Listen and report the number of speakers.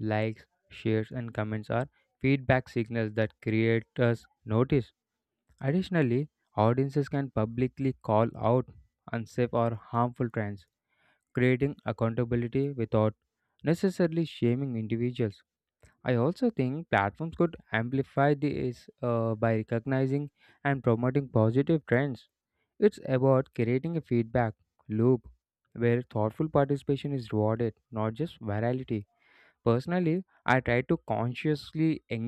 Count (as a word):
one